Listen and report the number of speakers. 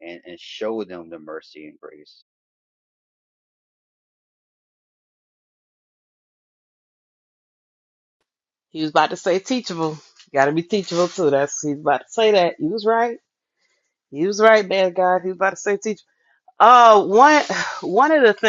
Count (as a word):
two